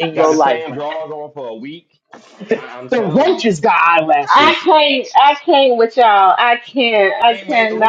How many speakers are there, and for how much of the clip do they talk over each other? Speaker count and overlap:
three, about 26%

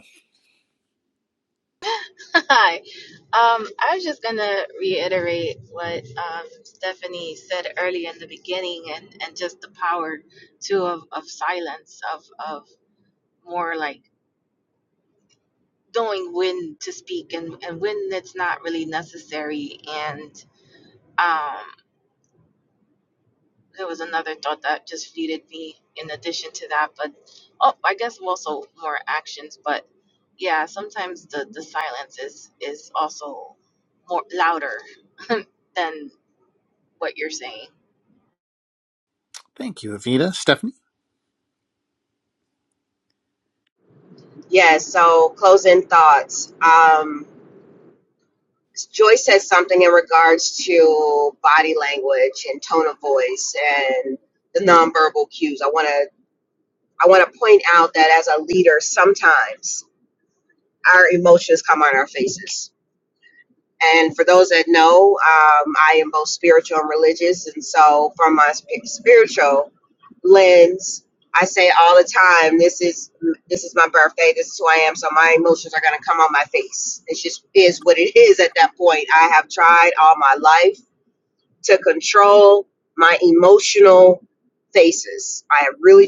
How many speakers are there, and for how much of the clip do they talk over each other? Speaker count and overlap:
three, no overlap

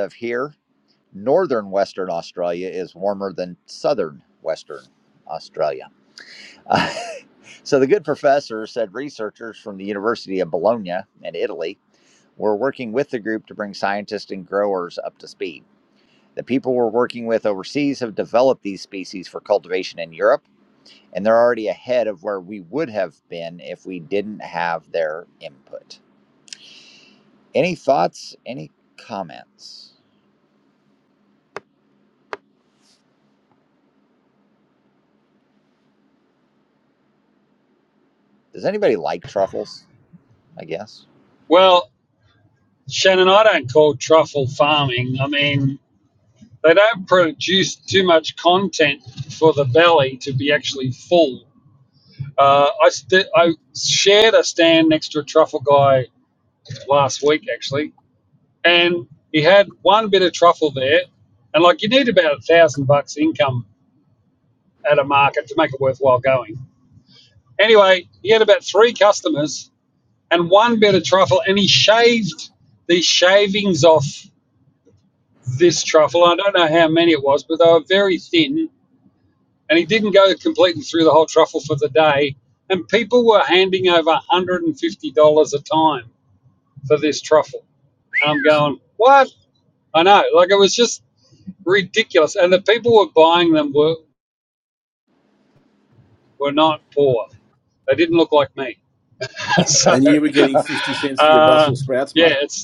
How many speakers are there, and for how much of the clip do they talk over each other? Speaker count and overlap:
three, about 1%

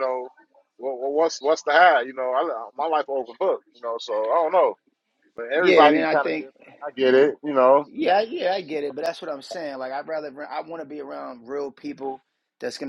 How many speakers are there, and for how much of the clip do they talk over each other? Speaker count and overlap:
two, about 7%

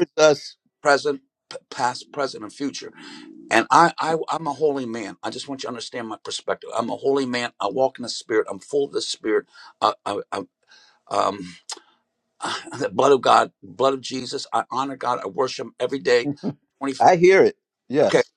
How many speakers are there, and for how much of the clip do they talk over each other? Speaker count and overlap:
two, about 1%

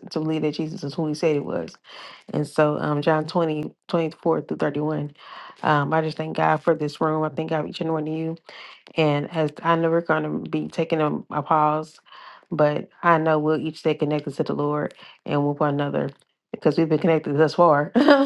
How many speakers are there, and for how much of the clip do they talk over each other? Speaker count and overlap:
one, no overlap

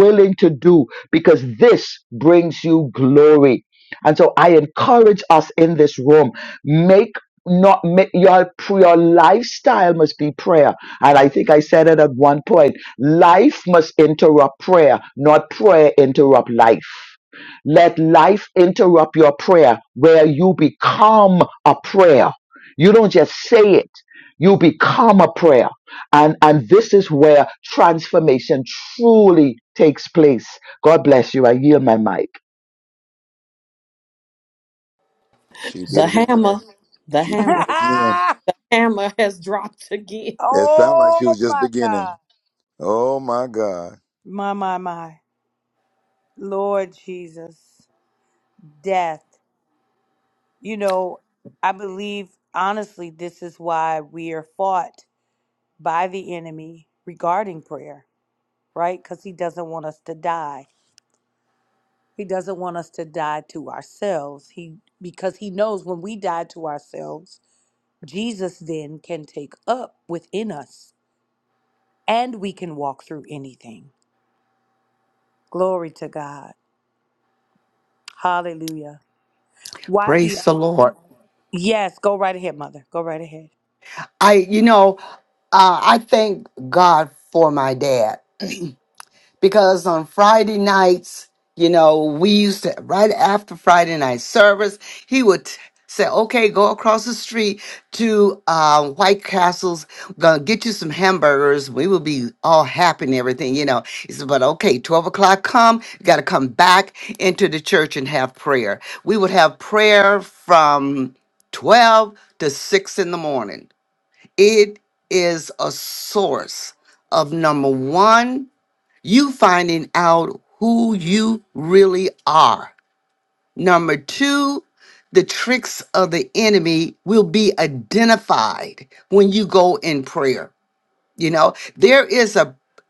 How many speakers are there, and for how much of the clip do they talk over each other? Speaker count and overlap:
five, about 2%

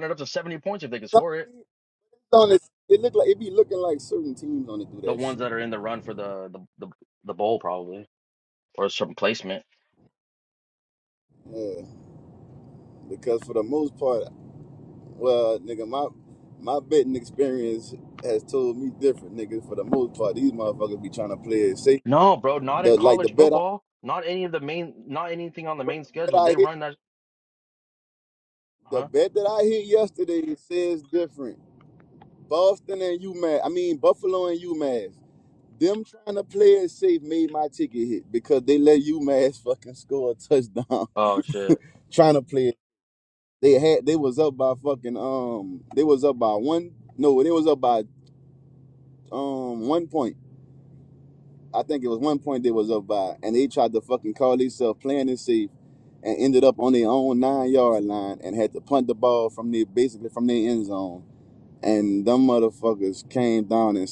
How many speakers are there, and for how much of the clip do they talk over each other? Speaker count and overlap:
two, about 4%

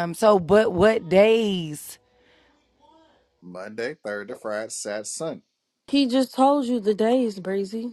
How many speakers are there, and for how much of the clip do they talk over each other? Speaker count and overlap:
three, no overlap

